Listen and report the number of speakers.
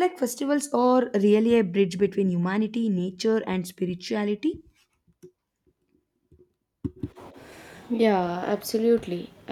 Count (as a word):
two